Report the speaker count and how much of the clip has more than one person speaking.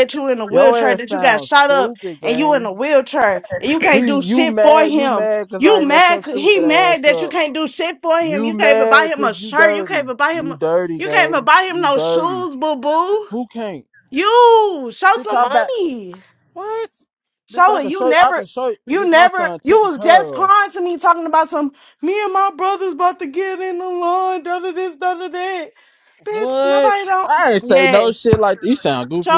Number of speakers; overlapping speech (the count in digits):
2, about 44%